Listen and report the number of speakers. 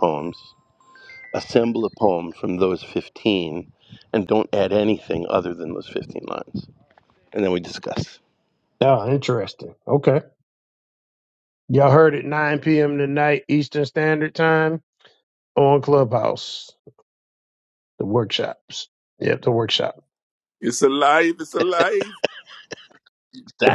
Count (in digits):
3